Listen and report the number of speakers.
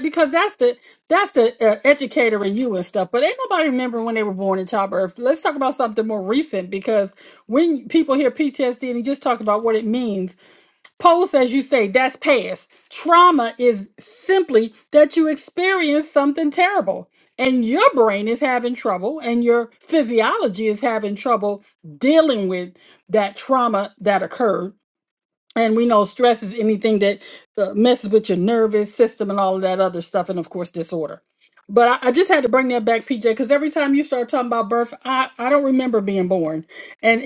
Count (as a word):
one